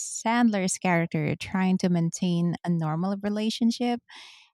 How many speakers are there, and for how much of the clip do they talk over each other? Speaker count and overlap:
one, no overlap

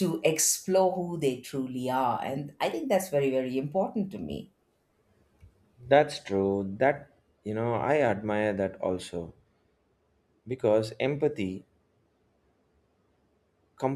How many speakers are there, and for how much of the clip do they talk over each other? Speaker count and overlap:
two, no overlap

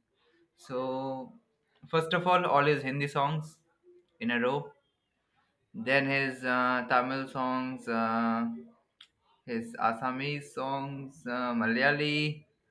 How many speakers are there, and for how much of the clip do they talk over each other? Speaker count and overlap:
one, no overlap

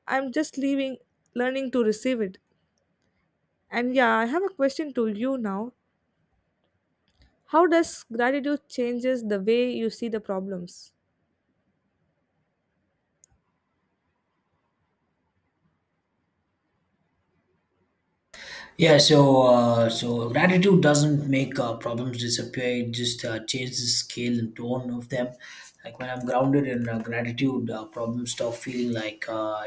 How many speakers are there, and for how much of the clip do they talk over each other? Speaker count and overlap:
two, no overlap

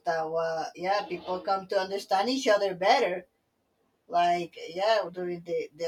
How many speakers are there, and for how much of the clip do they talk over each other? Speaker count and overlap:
one, no overlap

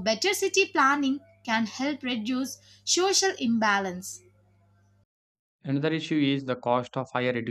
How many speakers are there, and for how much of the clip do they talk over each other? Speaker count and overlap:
two, no overlap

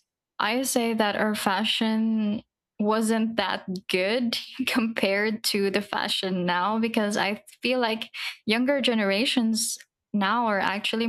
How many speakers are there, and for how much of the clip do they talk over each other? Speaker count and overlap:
one, no overlap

